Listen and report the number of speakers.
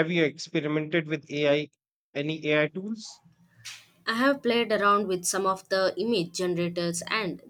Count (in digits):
2